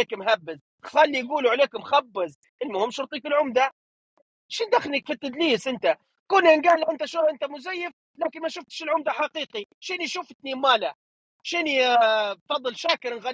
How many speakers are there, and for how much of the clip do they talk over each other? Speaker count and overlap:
1, no overlap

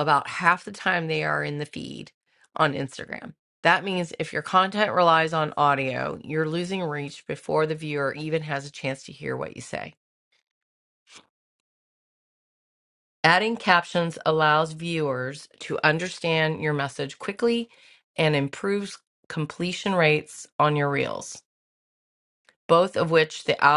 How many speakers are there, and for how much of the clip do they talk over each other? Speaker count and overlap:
1, no overlap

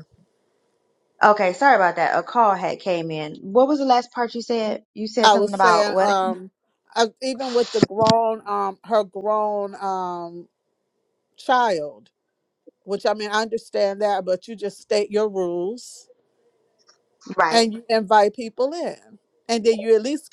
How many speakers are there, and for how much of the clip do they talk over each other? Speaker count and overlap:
2, about 5%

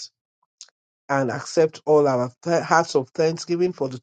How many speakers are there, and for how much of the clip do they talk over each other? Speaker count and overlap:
1, no overlap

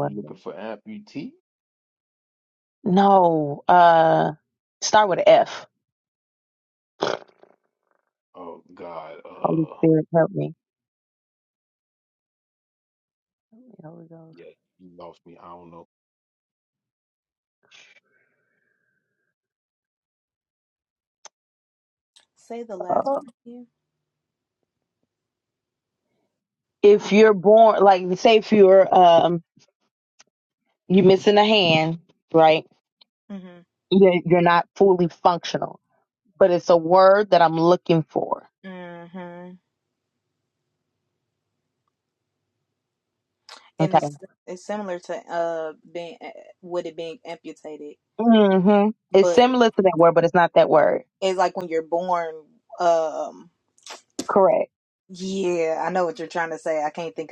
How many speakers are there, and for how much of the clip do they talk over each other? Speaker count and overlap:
3, about 2%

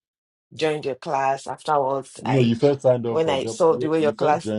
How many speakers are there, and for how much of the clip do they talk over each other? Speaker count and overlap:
2, about 36%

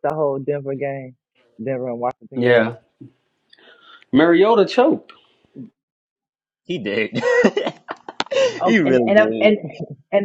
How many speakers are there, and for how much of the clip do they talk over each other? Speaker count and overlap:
3, about 13%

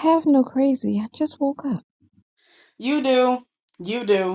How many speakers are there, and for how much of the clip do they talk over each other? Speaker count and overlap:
2, no overlap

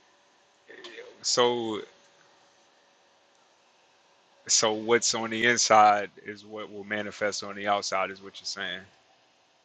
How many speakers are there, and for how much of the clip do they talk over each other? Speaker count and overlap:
1, no overlap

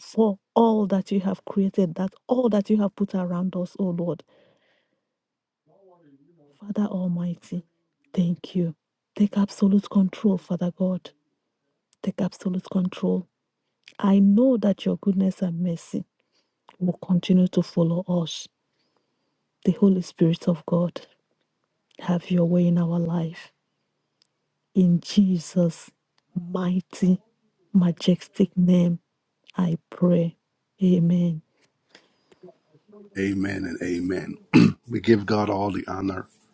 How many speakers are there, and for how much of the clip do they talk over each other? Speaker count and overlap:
2, no overlap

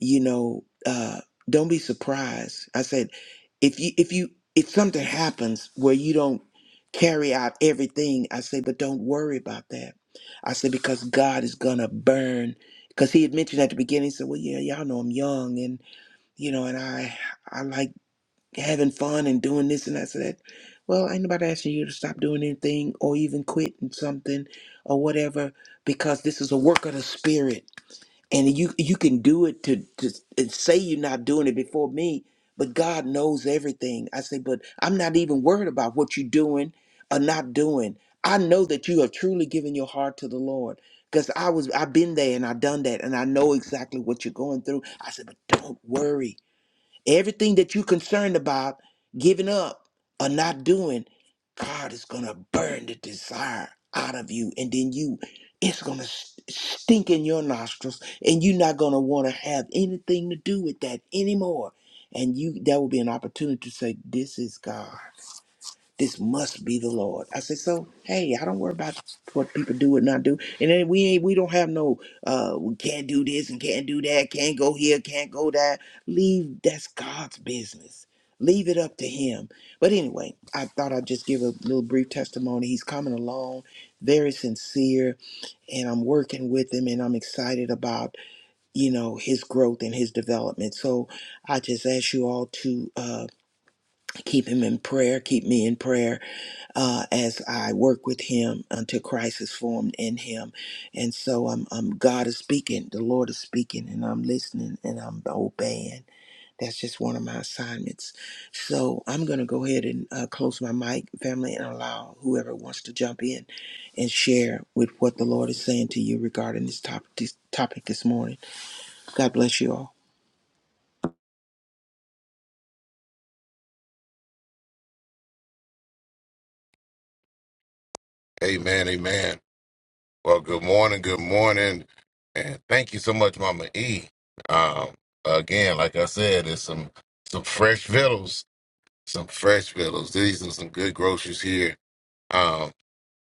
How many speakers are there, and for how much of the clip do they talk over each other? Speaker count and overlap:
2, no overlap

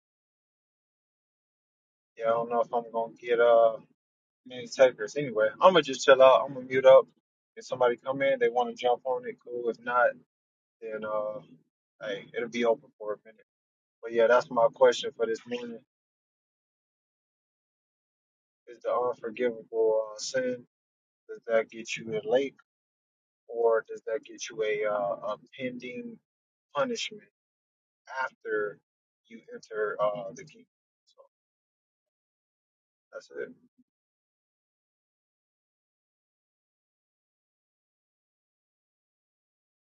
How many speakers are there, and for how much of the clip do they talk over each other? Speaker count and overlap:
1, no overlap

